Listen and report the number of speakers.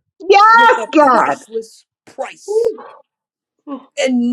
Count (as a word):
two